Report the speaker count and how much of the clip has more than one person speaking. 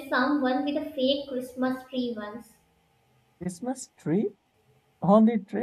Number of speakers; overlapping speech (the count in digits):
2, no overlap